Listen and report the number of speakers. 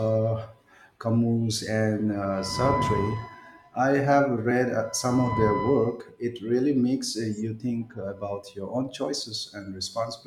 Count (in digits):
1